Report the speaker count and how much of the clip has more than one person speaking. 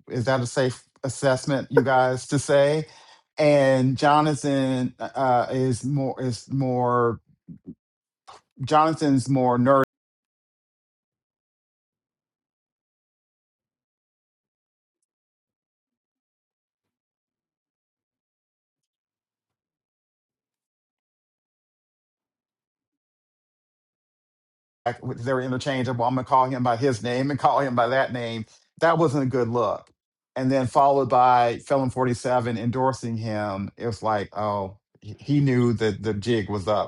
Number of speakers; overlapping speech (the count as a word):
one, no overlap